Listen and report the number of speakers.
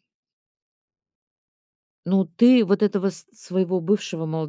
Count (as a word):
one